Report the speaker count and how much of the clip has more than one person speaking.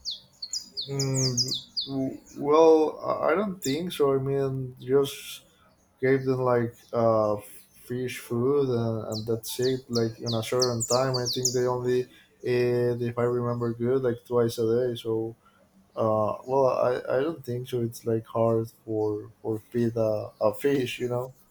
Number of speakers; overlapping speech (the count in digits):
1, no overlap